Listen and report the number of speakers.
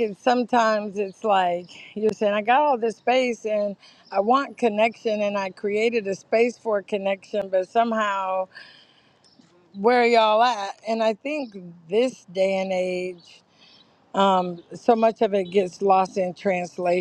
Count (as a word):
one